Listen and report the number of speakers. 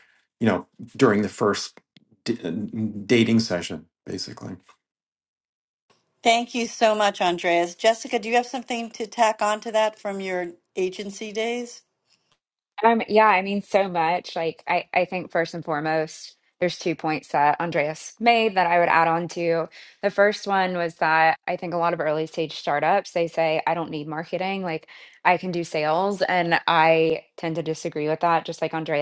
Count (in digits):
3